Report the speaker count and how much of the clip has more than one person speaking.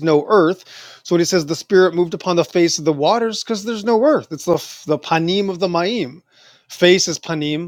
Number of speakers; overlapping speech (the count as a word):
one, no overlap